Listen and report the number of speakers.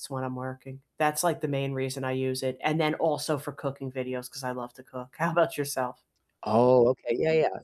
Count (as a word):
two